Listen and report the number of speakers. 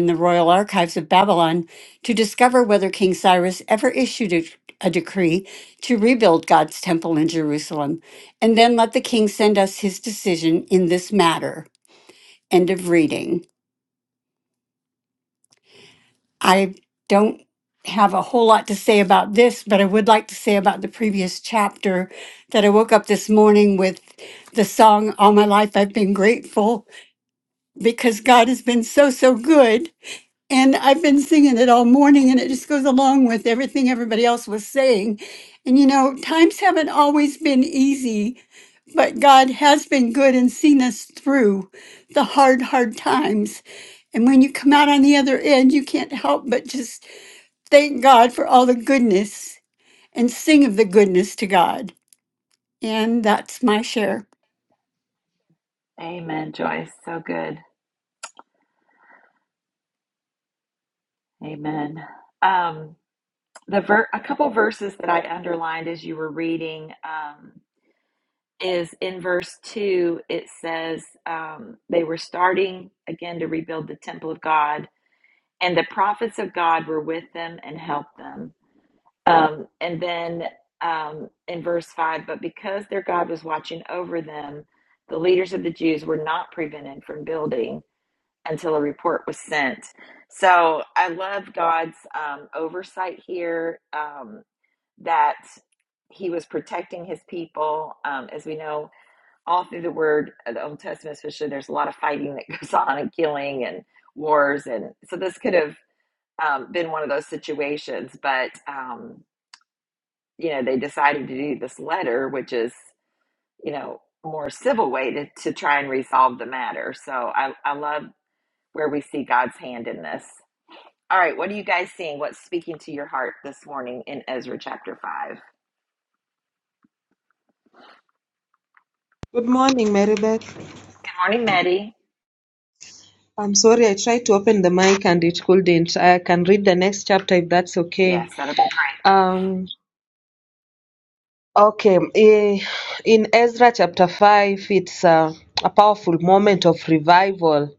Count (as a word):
three